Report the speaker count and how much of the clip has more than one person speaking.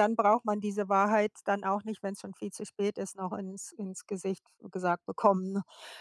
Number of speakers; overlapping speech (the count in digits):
1, no overlap